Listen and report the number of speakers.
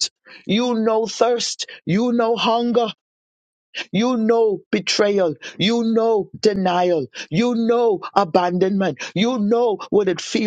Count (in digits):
1